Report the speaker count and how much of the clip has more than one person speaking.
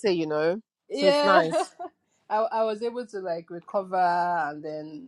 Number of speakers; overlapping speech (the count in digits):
2, about 9%